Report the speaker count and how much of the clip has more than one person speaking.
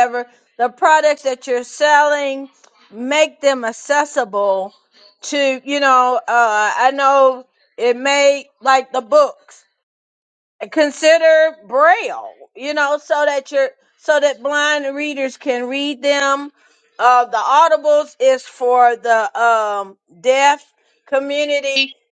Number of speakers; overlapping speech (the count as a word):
one, no overlap